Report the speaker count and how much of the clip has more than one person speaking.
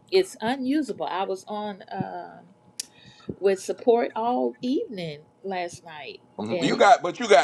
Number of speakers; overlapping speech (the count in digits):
2, about 5%